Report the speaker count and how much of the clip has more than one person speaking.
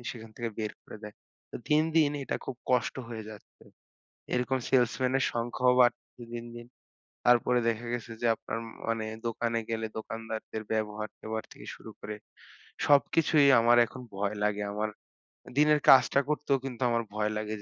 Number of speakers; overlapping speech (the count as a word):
one, no overlap